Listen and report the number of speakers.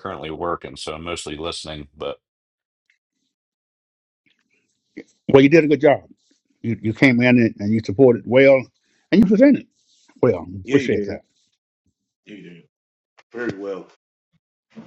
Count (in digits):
3